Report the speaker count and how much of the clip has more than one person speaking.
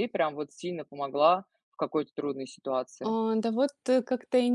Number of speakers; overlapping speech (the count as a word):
two, about 2%